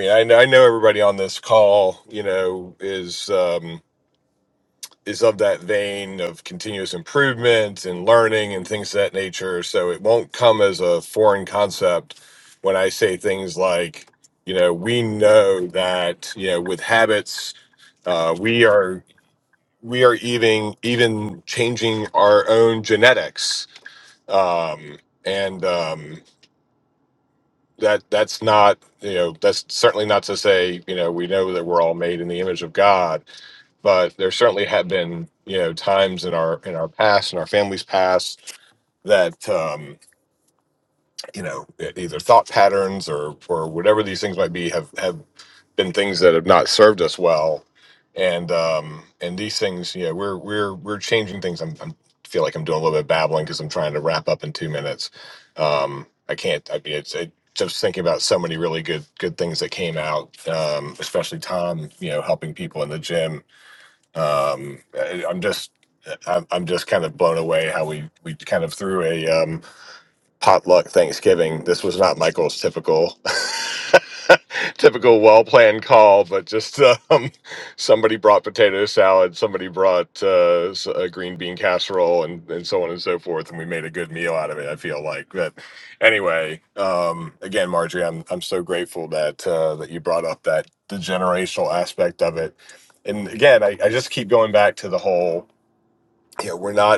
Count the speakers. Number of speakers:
one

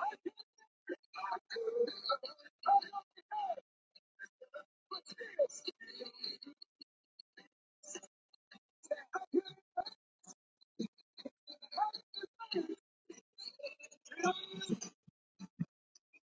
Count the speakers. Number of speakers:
zero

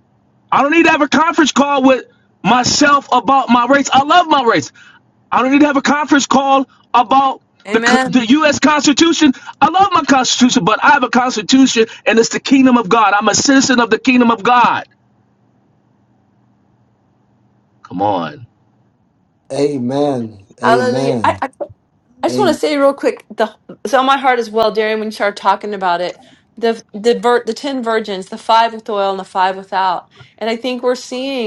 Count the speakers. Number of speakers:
three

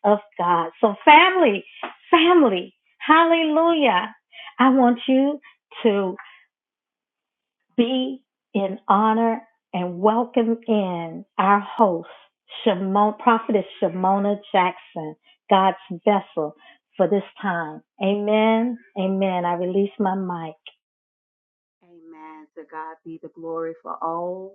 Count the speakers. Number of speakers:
two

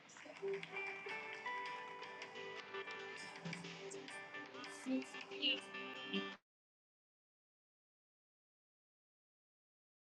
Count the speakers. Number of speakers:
zero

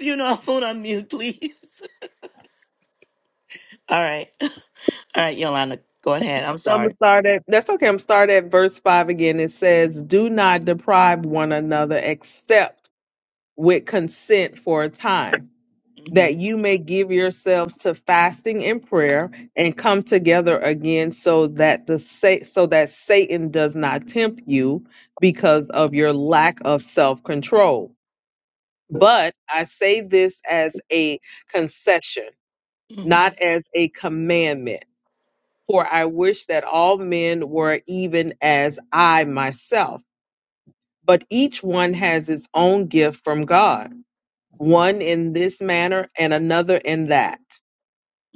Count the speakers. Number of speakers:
two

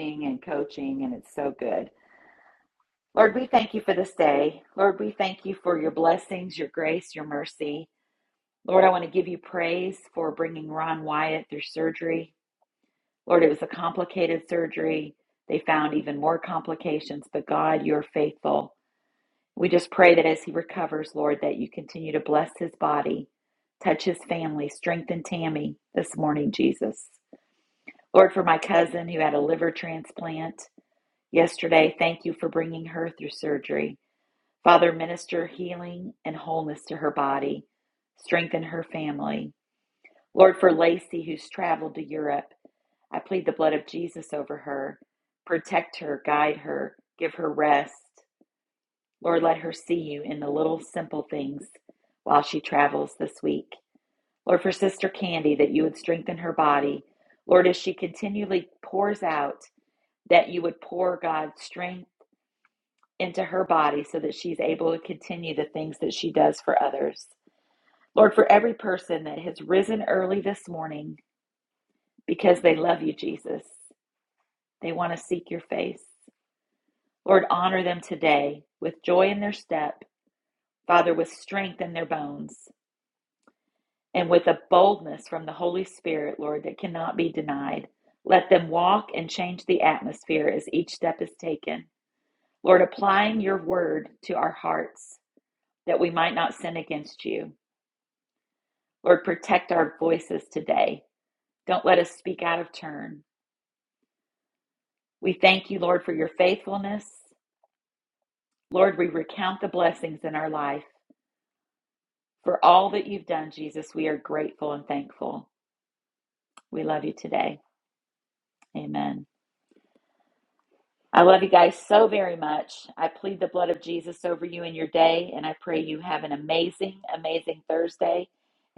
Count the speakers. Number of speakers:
one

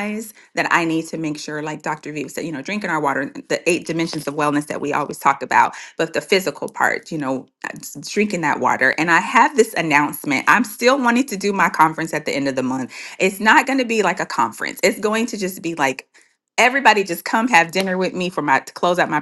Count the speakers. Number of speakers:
one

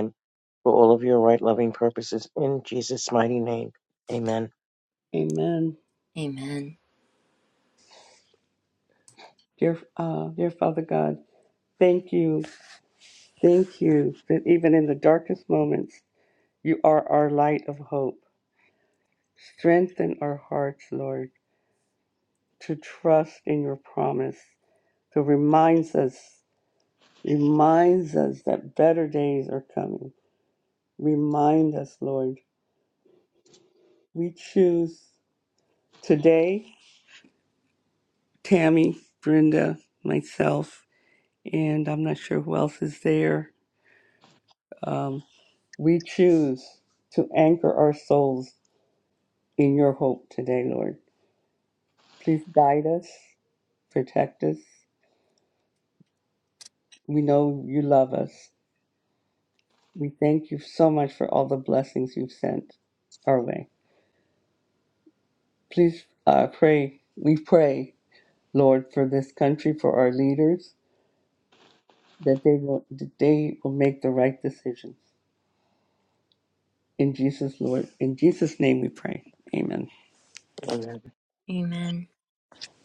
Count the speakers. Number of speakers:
three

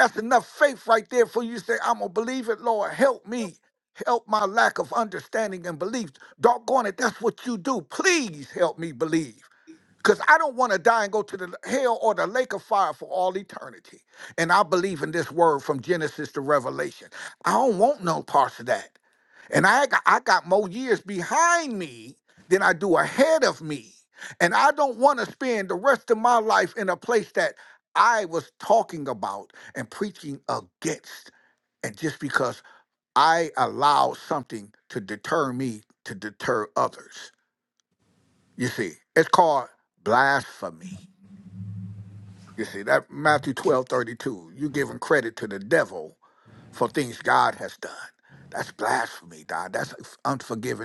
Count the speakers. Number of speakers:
one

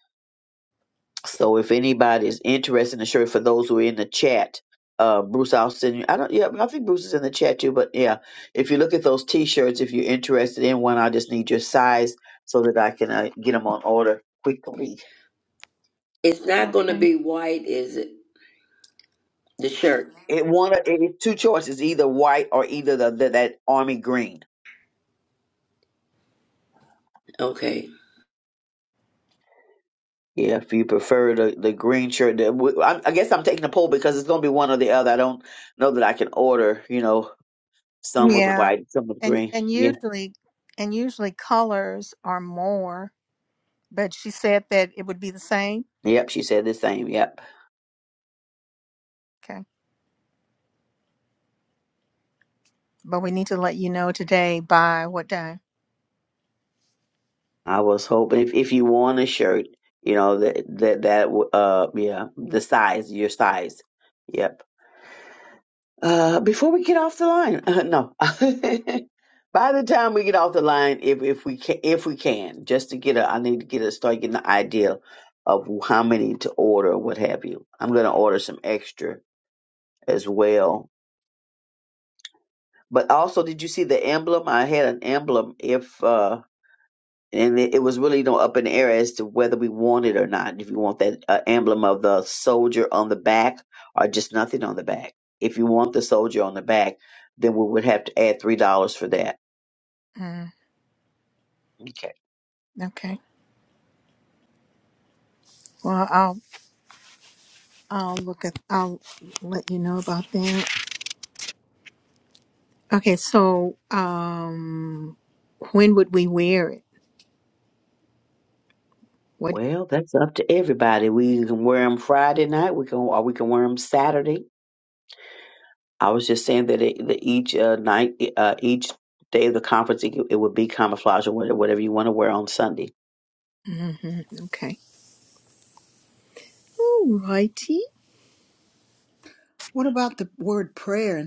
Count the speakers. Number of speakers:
four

